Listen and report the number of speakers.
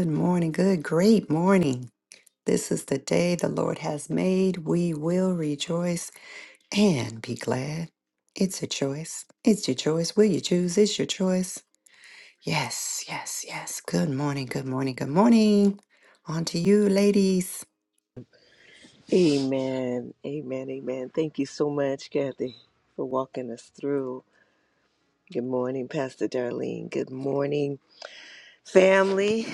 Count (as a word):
two